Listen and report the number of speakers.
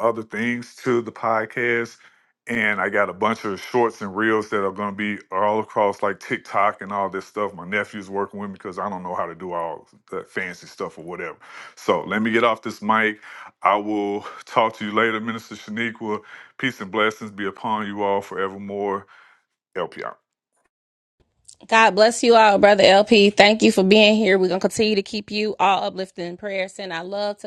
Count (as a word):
two